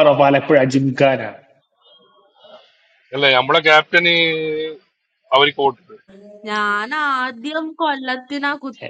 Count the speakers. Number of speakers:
3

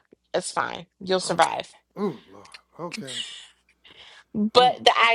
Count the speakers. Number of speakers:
2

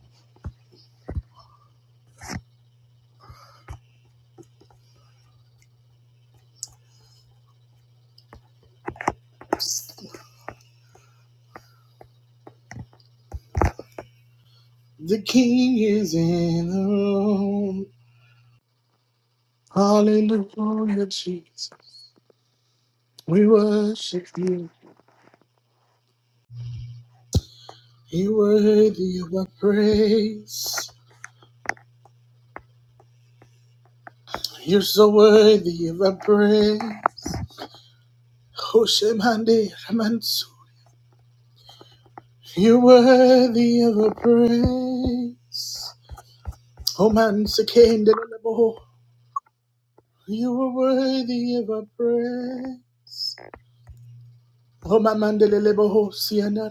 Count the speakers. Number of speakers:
1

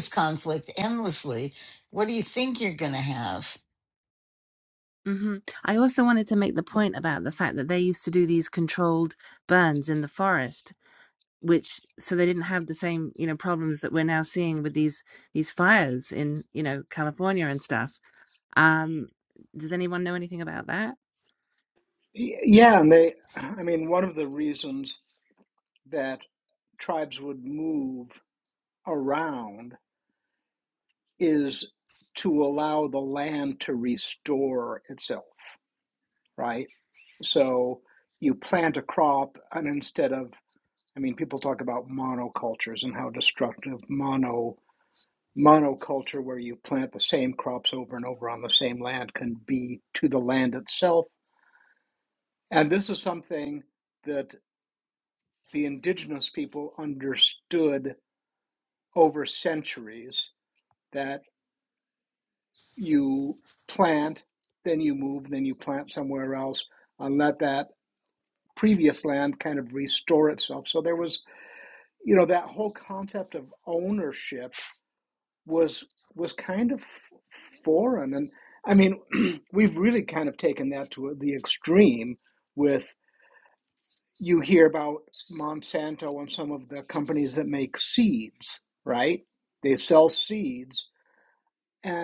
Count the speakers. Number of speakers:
3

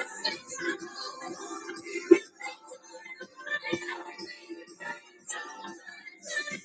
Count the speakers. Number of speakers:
0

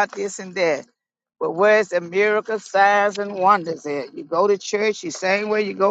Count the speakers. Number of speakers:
1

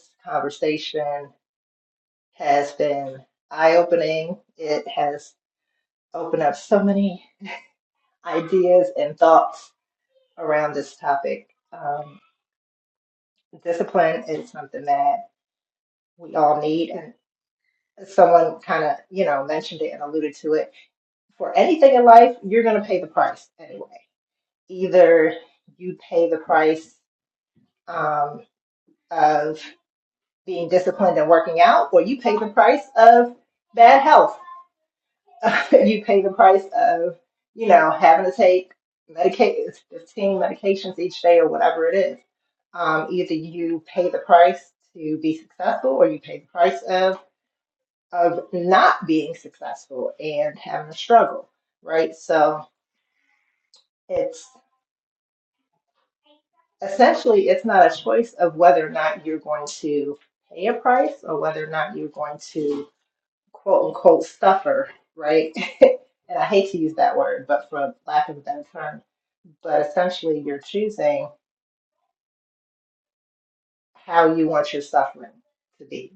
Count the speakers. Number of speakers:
1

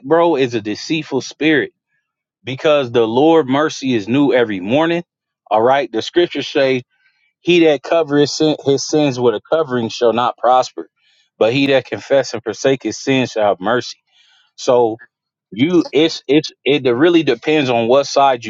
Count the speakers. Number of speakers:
1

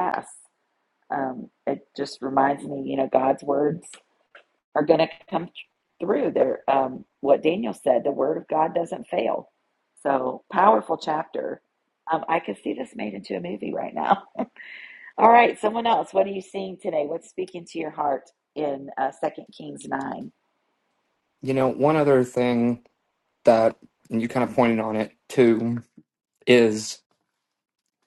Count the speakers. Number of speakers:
2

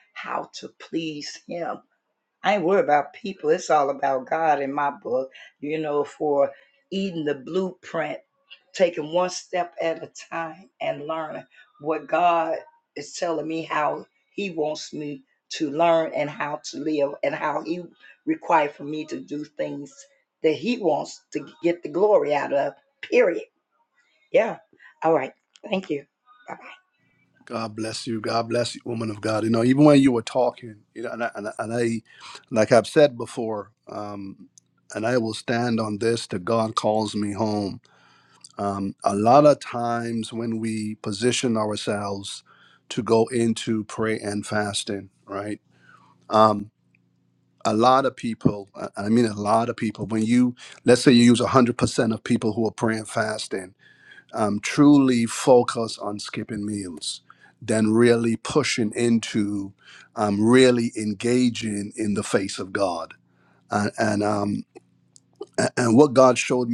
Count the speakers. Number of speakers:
2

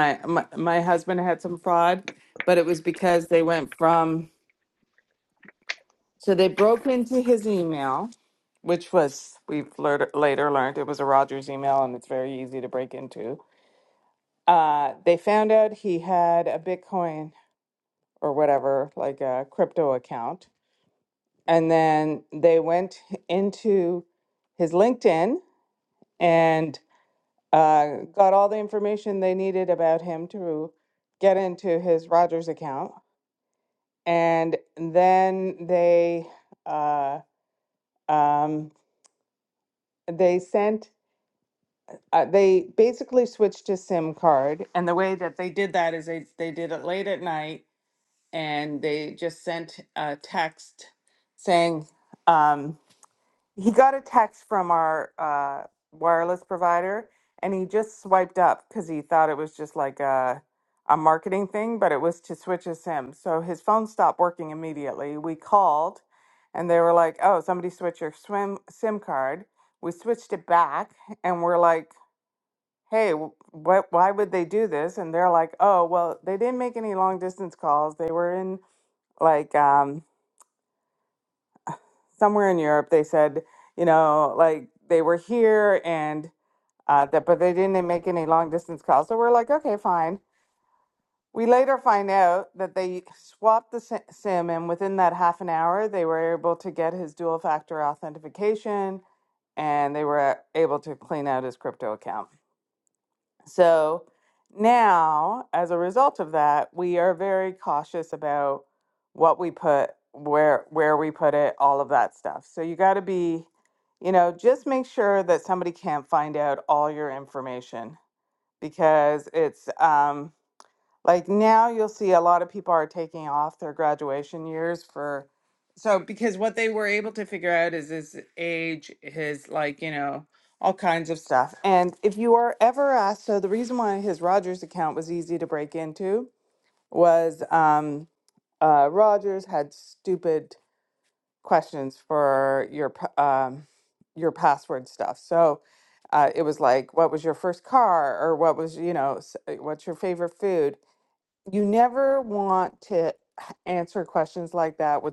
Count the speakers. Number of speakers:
1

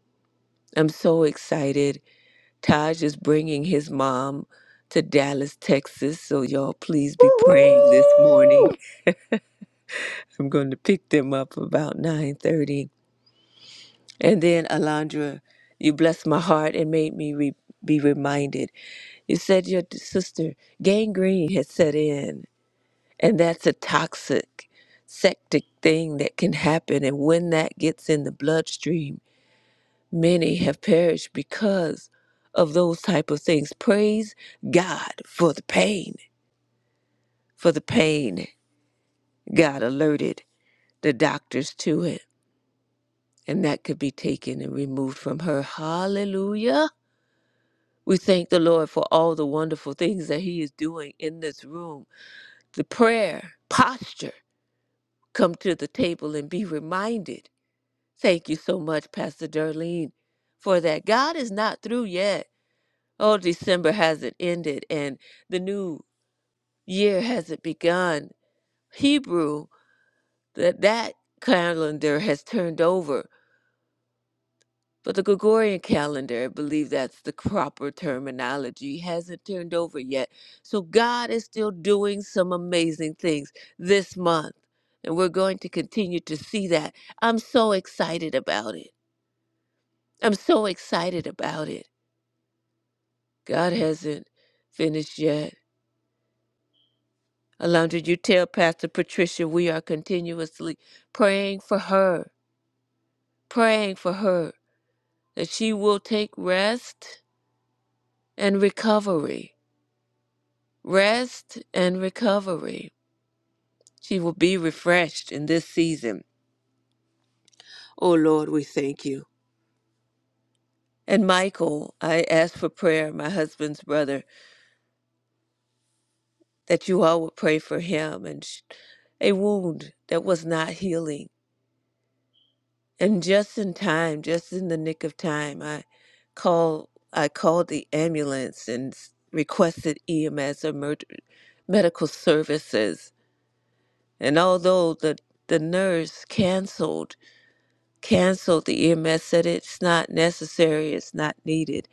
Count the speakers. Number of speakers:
1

